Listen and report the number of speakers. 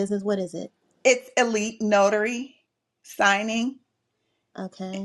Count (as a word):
two